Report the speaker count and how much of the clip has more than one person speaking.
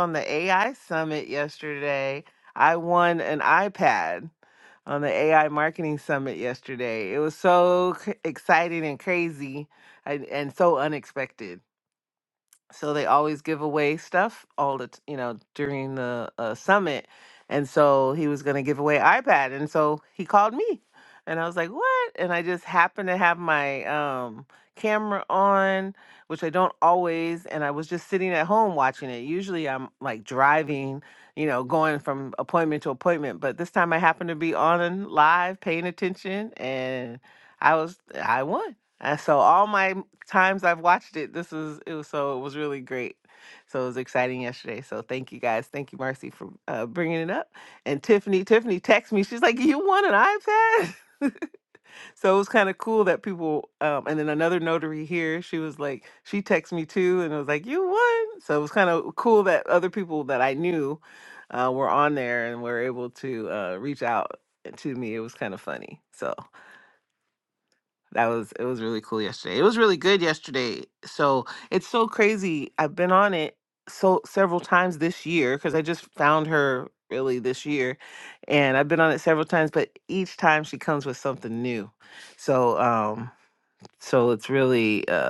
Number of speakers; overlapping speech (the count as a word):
one, no overlap